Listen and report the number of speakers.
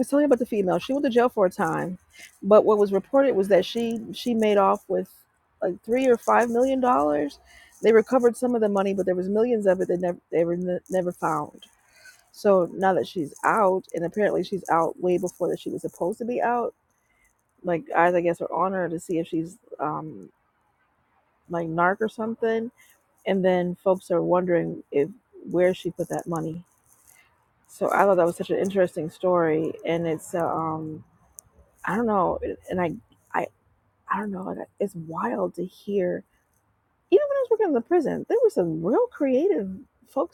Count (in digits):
1